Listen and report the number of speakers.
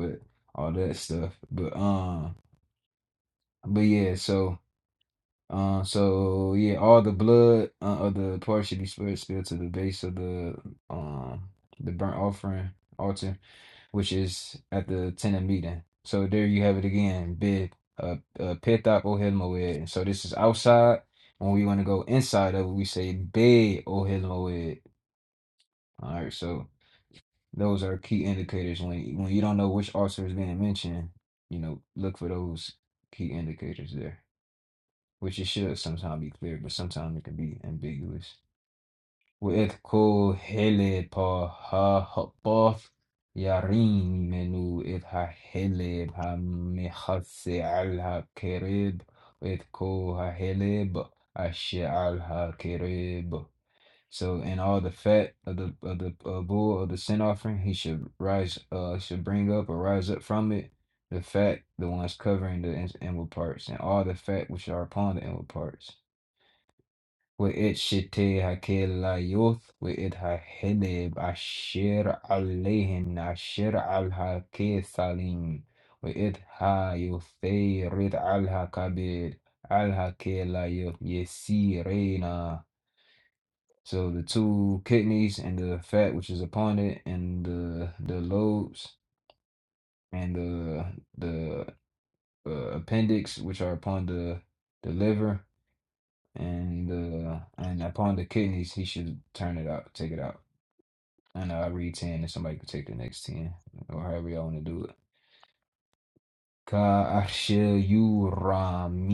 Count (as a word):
one